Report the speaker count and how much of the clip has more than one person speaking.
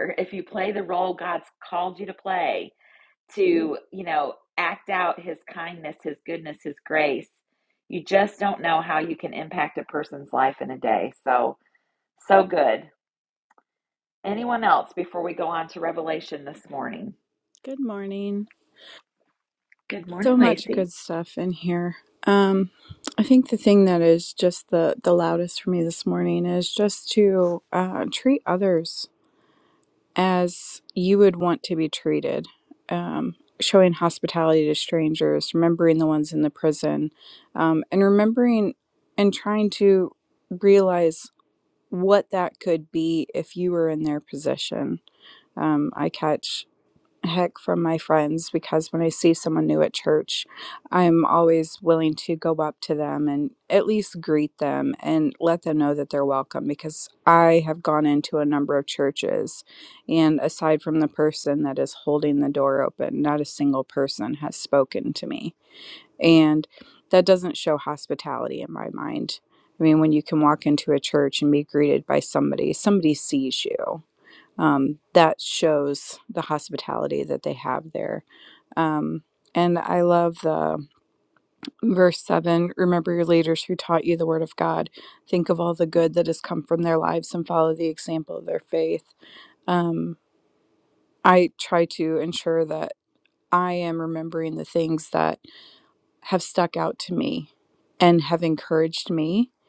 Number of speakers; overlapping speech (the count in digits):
2, about 1%